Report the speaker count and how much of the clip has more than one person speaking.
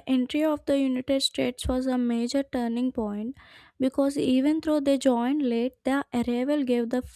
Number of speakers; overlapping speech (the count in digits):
1, no overlap